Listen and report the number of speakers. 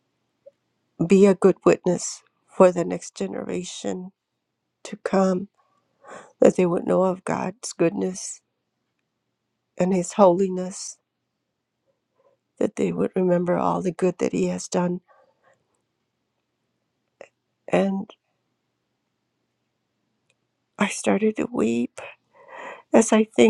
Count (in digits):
1